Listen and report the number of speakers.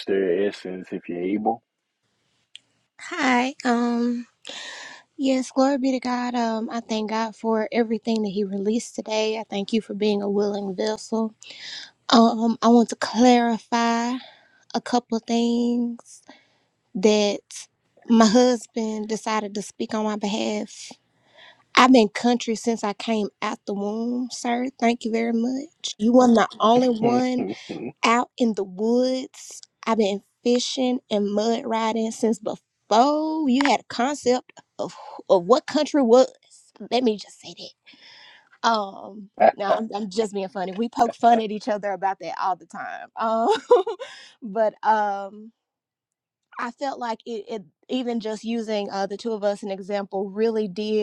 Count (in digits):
2